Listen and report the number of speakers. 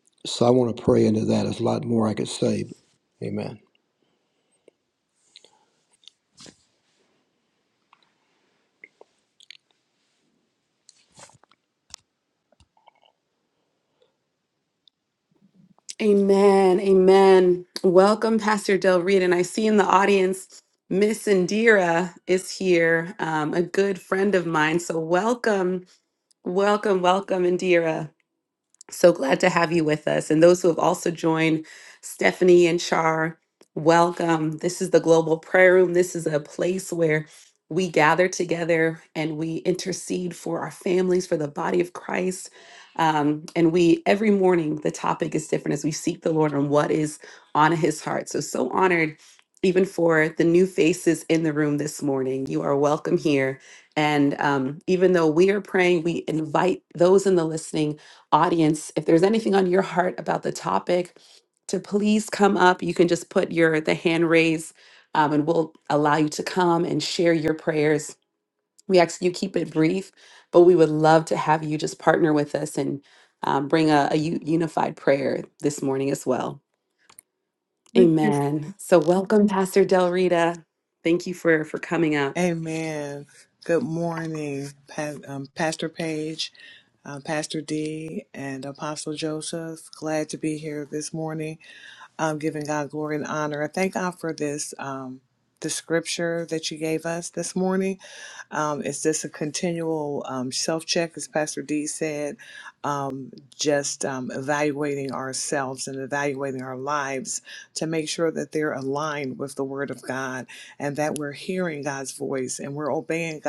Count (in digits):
3